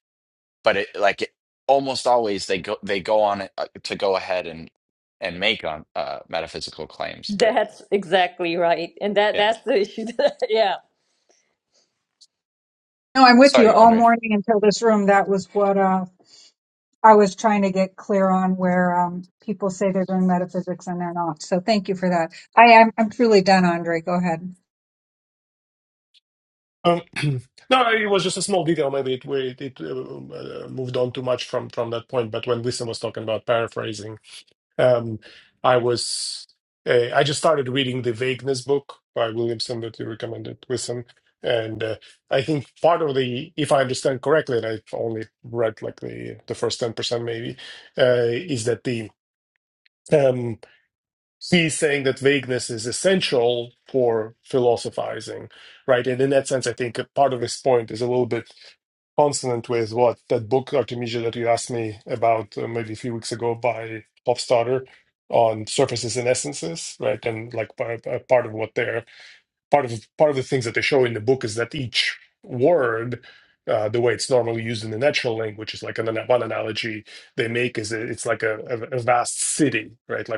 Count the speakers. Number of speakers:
4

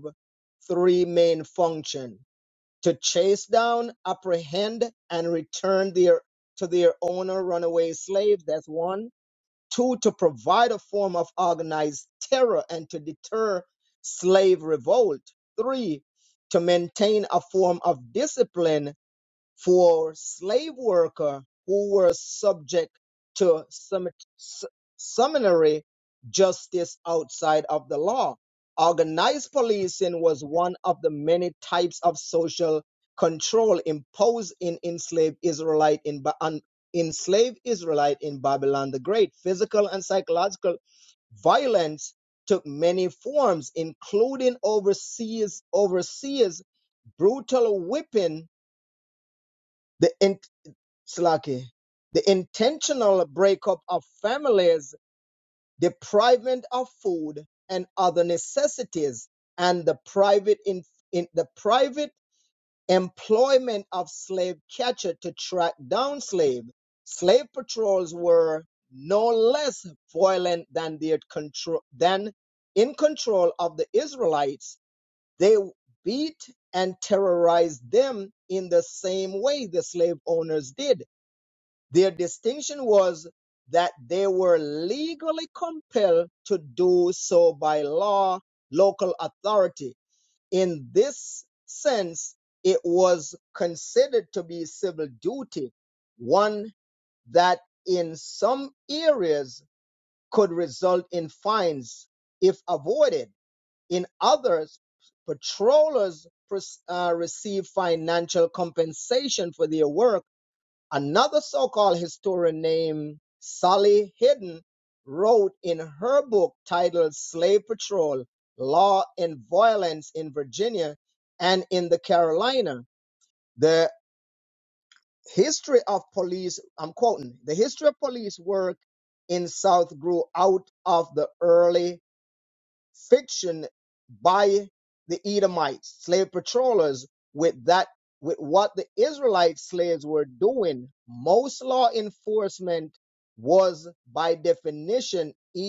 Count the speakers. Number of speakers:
1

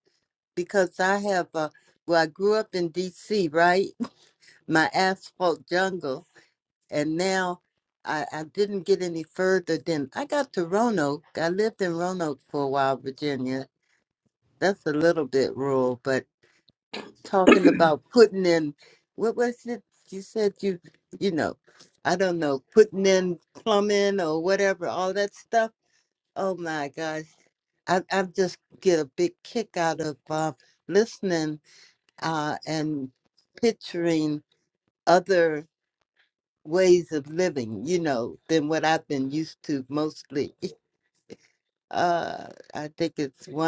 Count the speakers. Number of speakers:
1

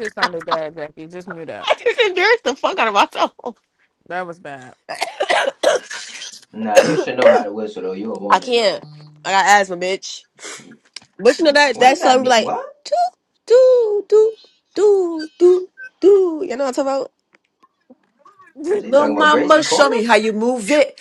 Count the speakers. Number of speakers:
4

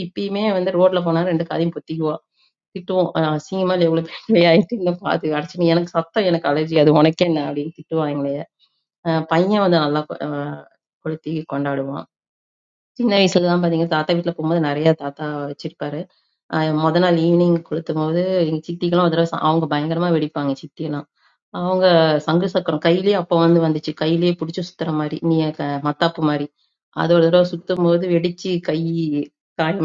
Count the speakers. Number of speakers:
1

